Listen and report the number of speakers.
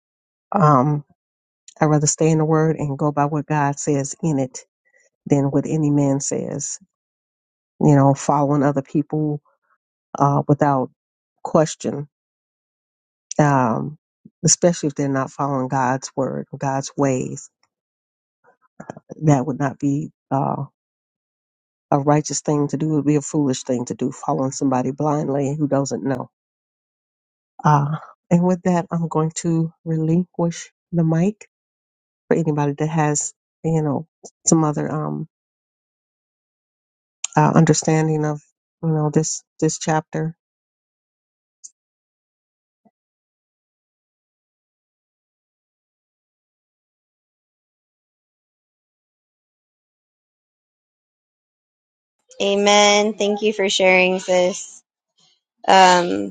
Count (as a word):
two